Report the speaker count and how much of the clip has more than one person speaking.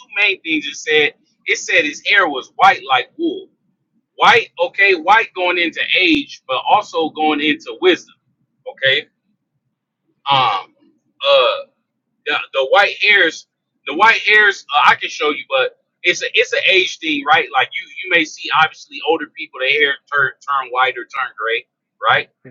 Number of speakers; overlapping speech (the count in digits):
1, no overlap